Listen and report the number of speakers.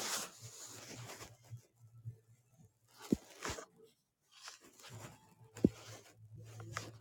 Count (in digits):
0